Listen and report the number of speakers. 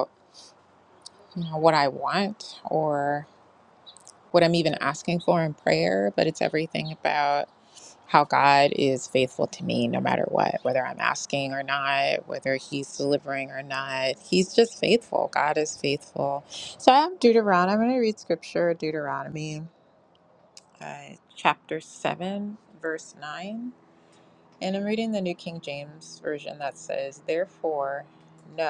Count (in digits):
1